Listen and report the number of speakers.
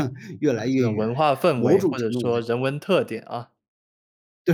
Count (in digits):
2